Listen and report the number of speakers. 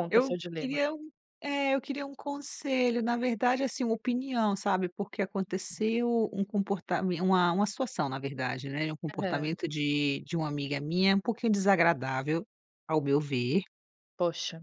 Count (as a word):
two